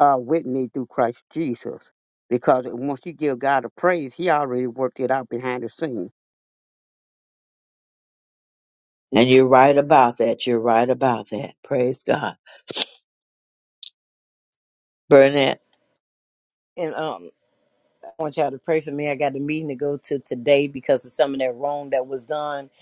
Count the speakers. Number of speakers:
three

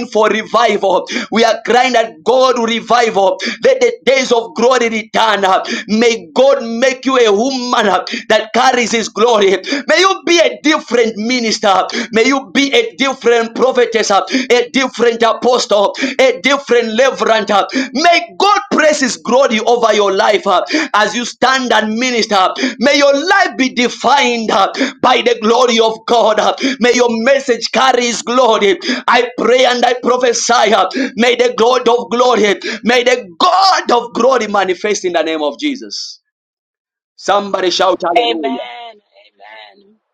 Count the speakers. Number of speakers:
two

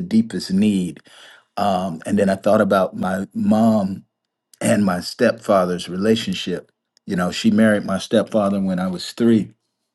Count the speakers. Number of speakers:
one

